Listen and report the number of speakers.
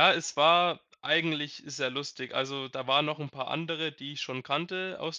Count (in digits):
1